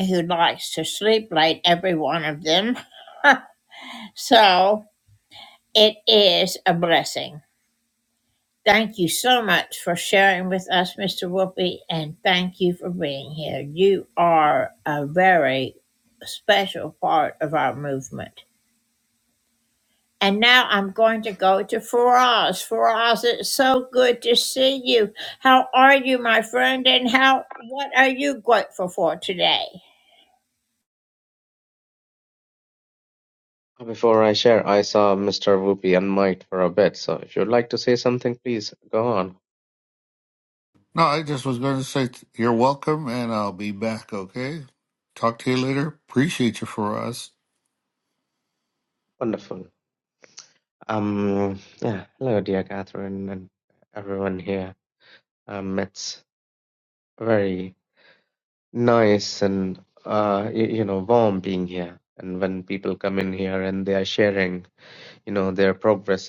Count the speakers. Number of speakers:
3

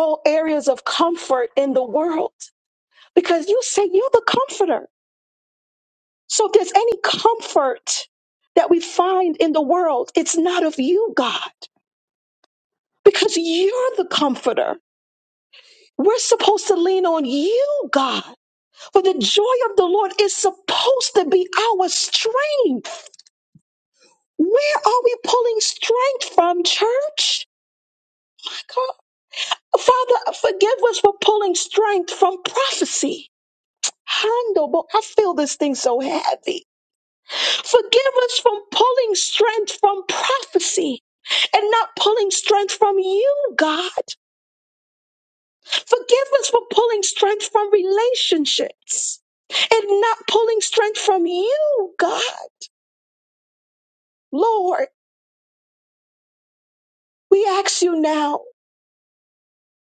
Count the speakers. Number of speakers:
1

